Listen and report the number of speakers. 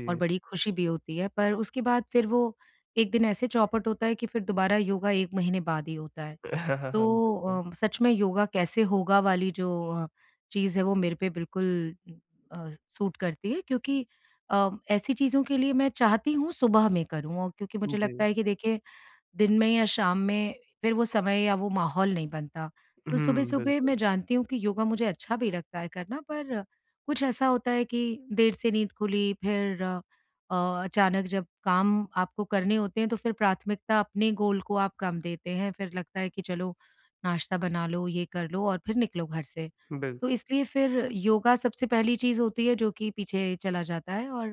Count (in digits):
2